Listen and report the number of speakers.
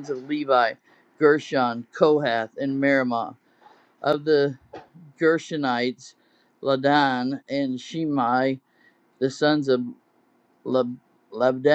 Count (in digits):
1